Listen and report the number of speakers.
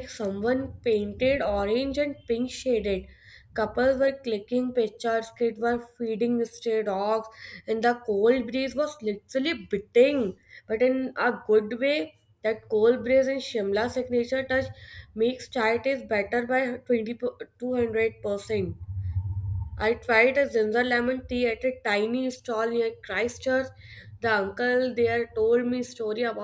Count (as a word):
one